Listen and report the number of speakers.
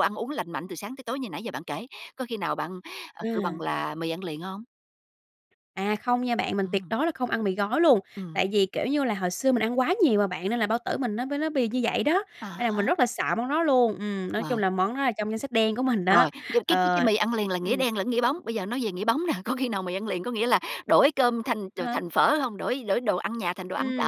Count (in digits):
2